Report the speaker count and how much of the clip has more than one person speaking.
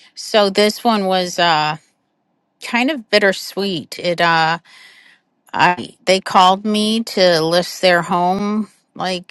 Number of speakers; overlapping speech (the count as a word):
one, no overlap